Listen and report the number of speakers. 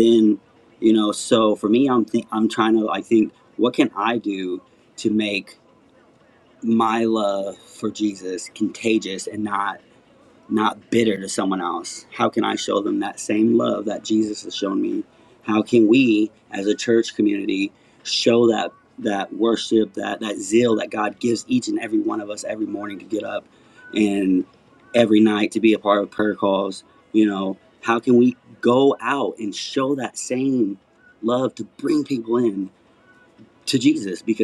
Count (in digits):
1